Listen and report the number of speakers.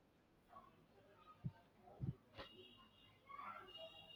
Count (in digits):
0